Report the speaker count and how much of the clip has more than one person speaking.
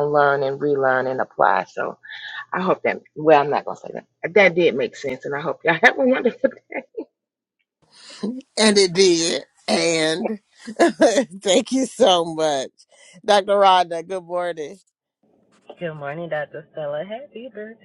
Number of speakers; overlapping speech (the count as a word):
three, no overlap